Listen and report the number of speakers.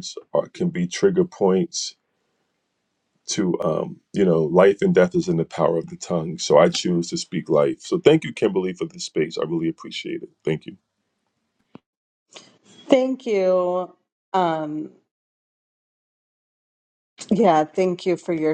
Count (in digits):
2